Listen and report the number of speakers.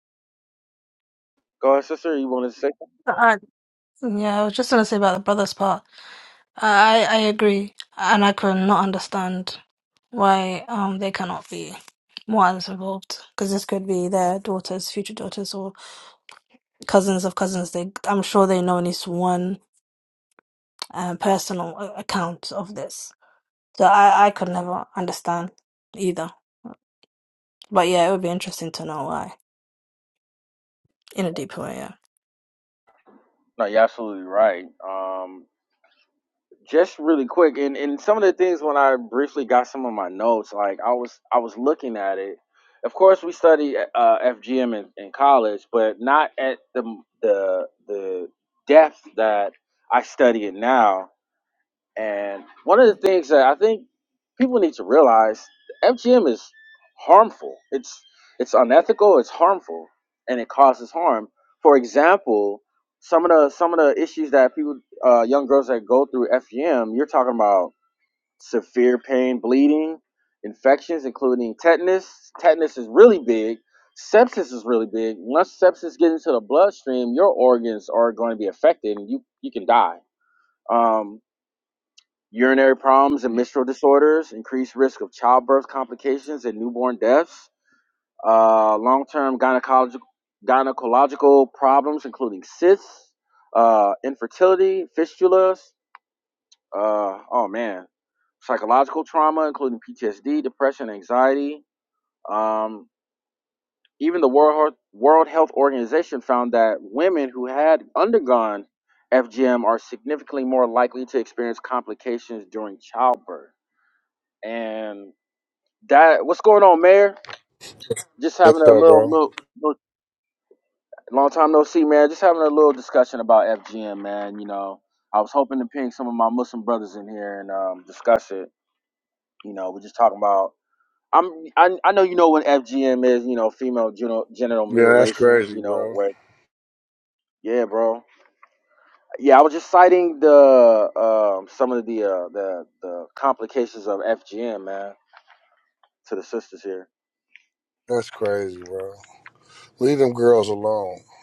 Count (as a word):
three